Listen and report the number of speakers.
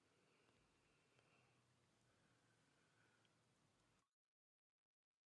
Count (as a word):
zero